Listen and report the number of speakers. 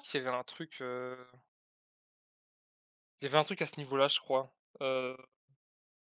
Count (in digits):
1